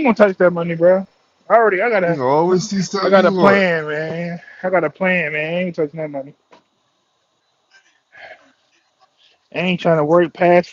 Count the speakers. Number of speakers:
2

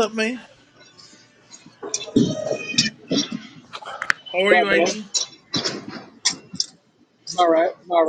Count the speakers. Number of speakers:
2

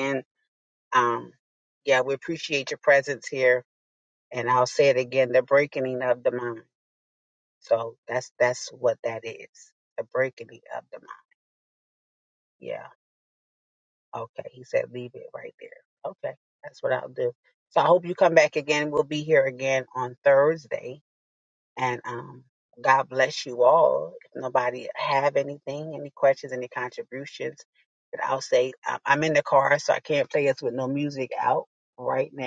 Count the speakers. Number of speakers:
1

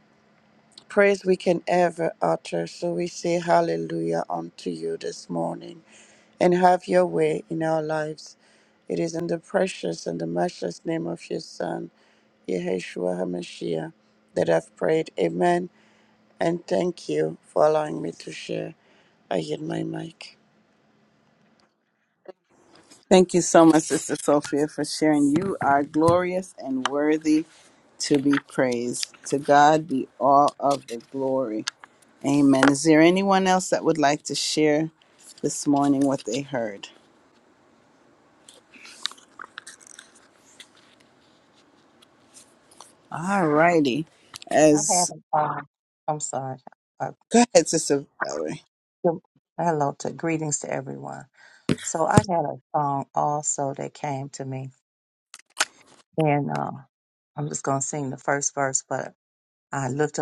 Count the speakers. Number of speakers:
3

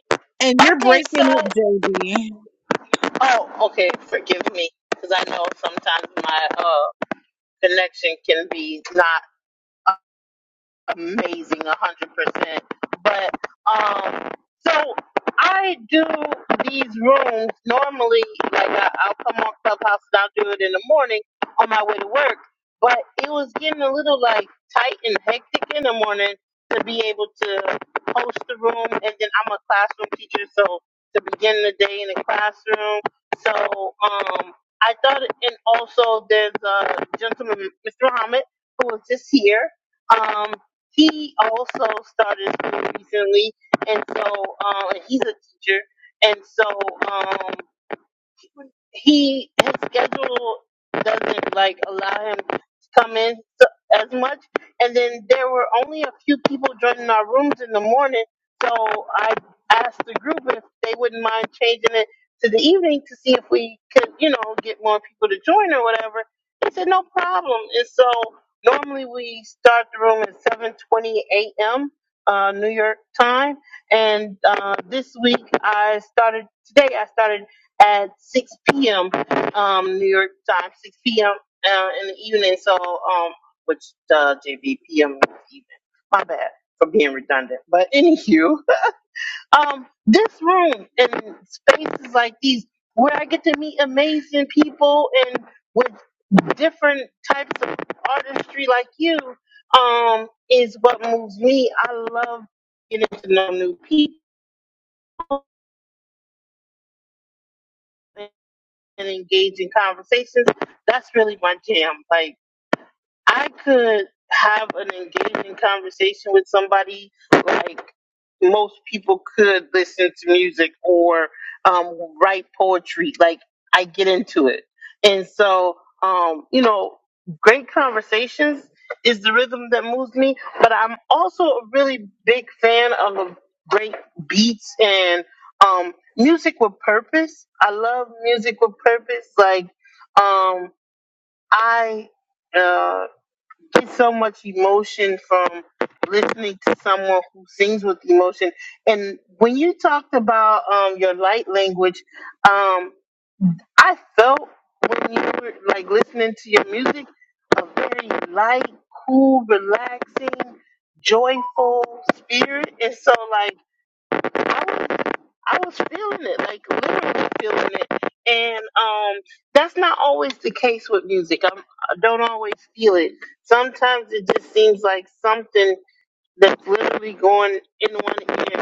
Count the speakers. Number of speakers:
2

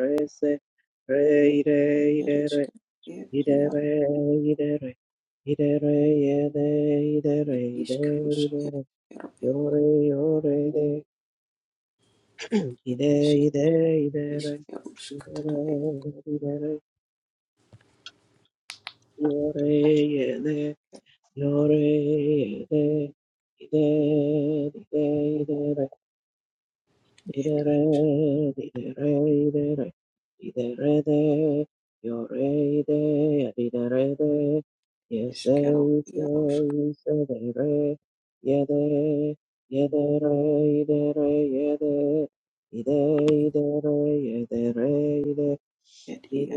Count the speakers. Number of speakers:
2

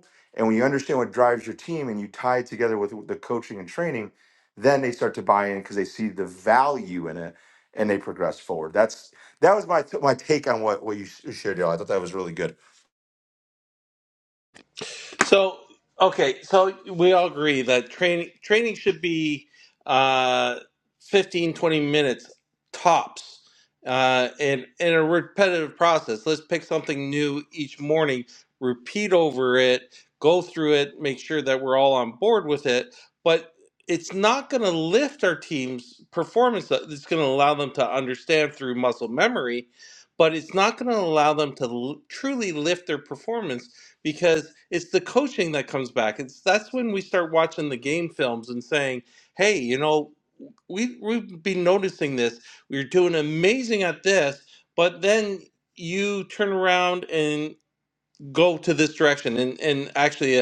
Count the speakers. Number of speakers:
2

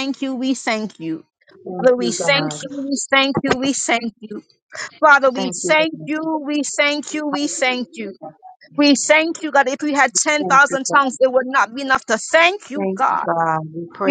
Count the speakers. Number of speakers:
2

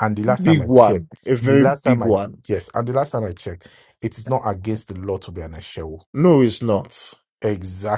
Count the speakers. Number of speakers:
2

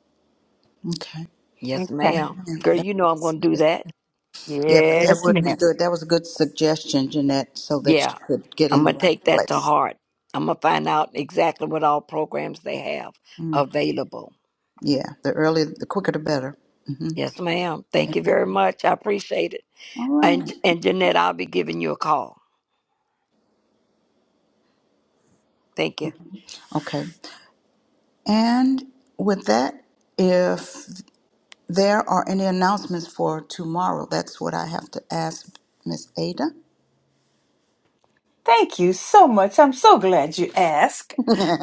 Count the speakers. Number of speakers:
3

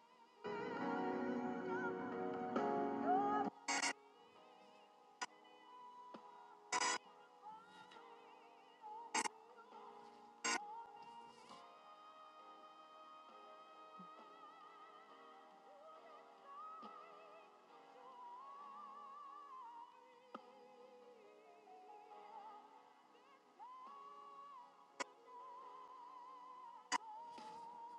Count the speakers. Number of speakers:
0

